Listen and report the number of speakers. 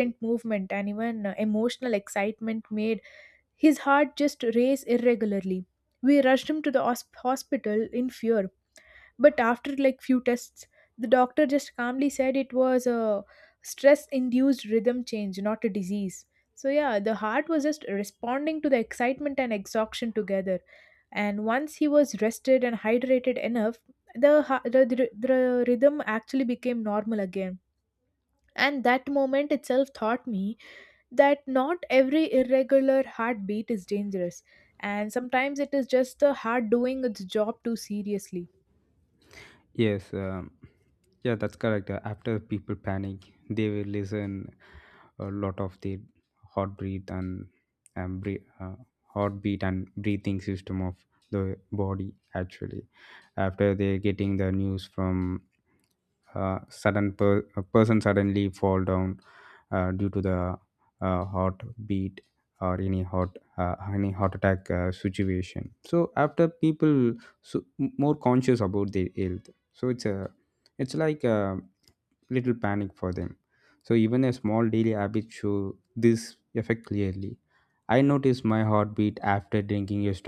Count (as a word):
two